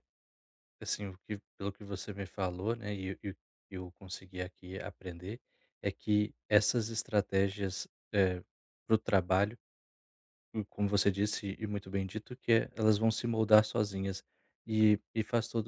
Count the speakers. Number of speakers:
1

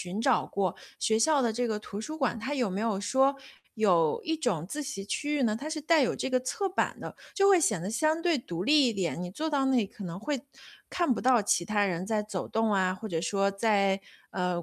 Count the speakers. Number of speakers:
1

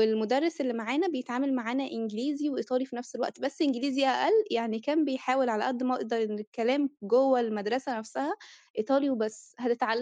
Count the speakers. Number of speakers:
1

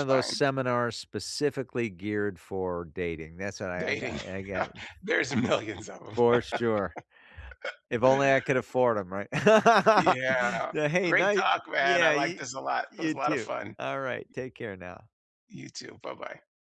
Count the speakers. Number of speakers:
2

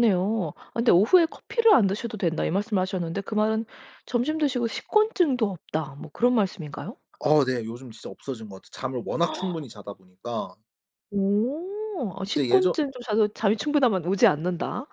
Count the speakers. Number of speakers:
2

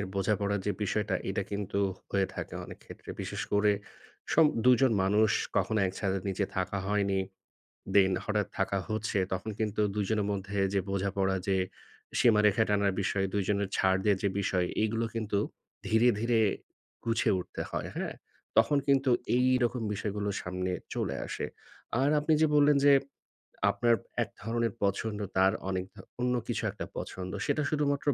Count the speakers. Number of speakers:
1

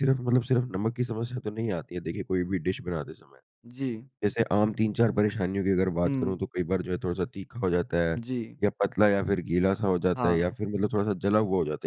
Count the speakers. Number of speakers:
2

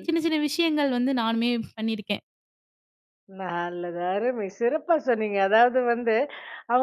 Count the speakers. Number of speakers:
2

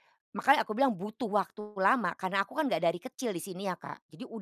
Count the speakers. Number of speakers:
1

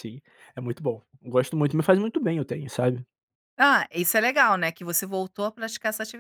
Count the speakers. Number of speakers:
2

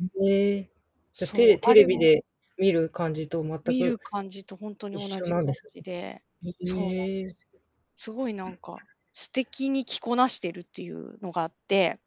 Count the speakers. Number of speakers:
2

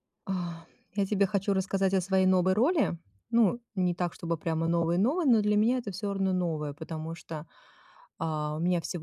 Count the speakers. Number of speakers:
1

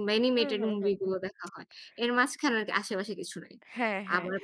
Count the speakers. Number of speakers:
2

